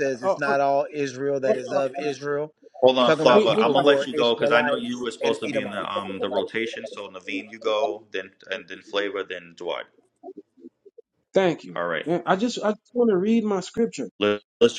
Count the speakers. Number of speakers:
3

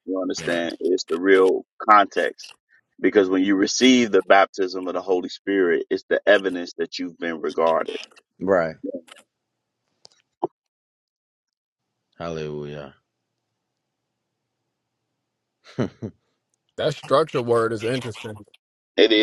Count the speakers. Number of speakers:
3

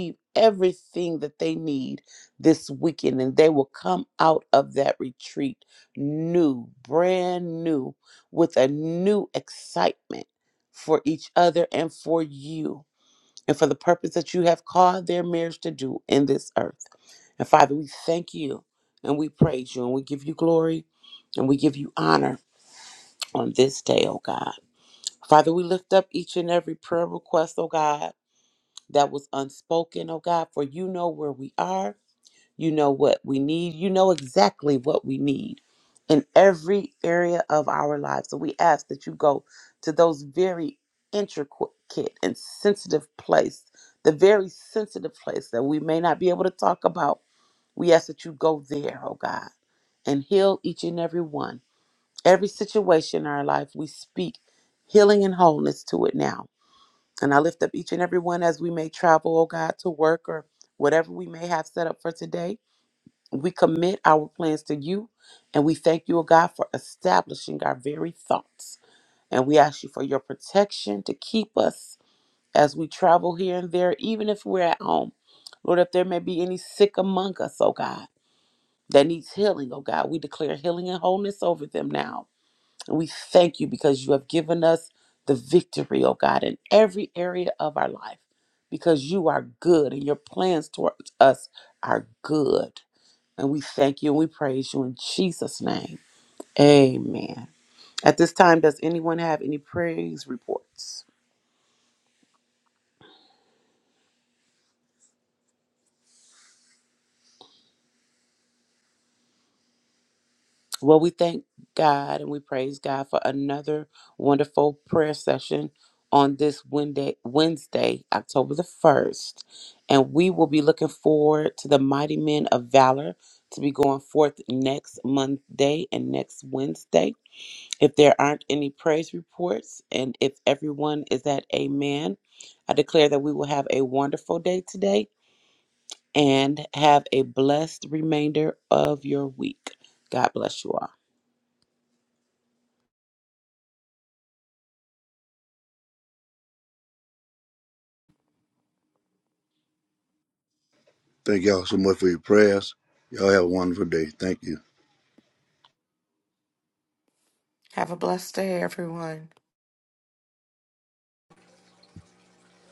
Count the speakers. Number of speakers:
3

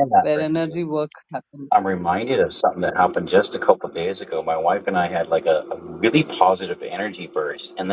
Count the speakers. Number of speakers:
2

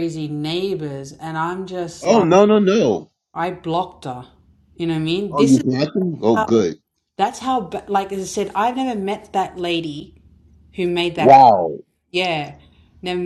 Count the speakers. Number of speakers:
2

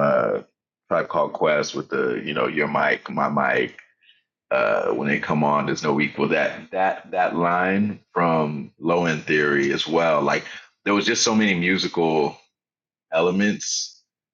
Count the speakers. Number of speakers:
1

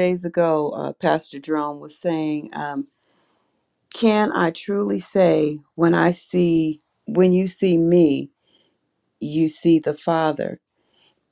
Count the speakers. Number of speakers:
1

